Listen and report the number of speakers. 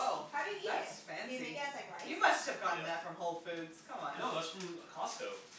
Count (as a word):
three